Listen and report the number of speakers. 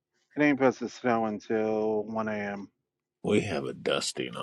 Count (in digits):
2